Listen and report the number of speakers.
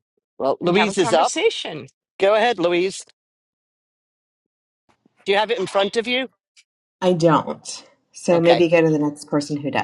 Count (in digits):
3